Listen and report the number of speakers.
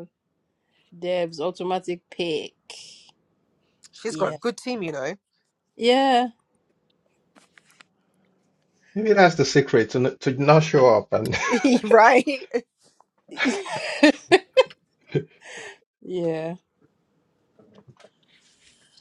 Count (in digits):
3